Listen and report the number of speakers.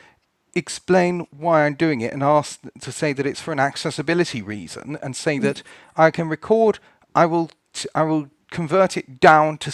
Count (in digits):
1